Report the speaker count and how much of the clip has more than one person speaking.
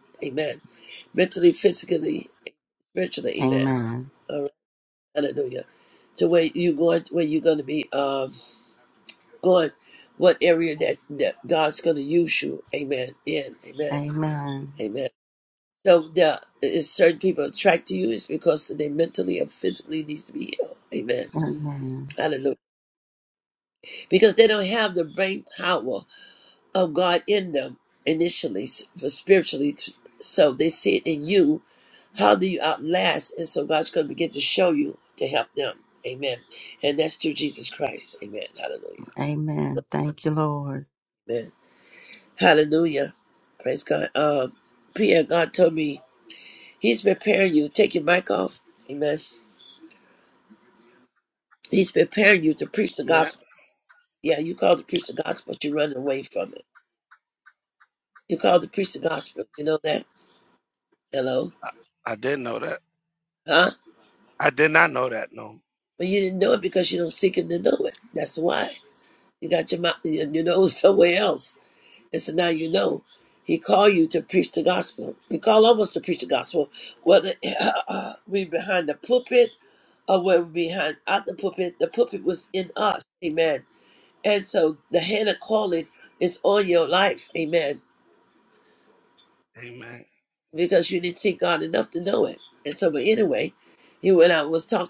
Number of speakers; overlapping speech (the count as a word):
three, about 1%